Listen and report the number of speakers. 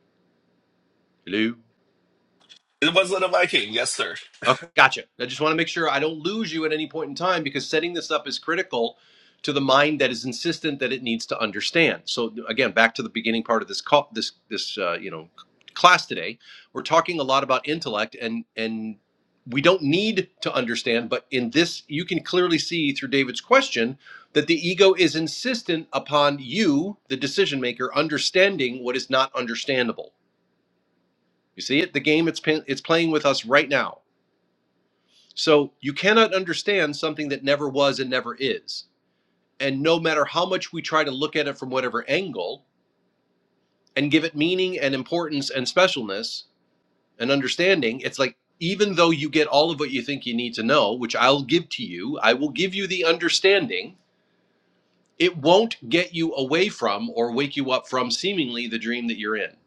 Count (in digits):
2